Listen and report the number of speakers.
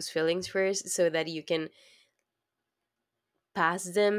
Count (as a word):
one